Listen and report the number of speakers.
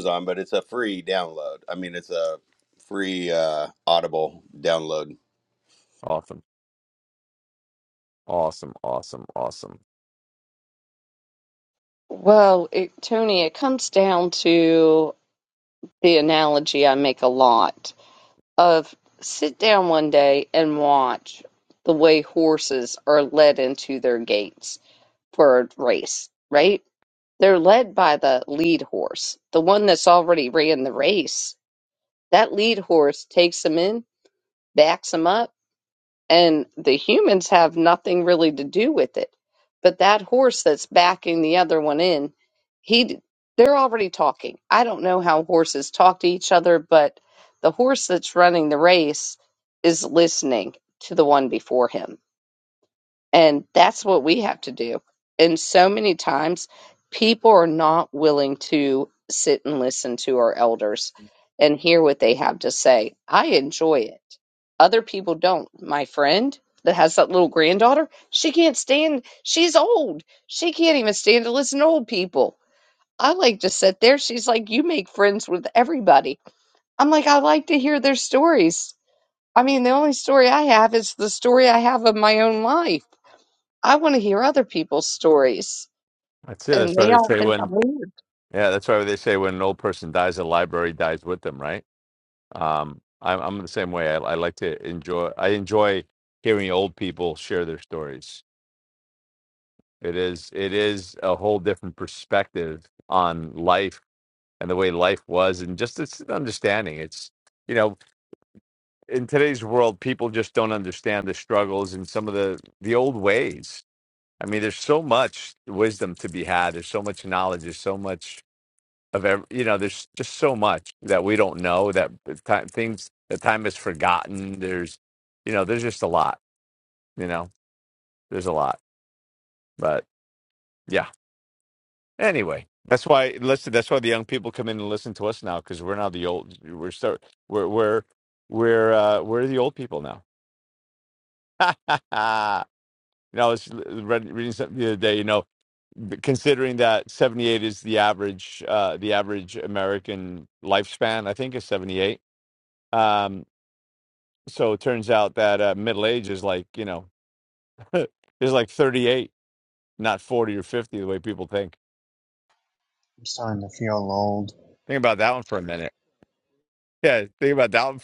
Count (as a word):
four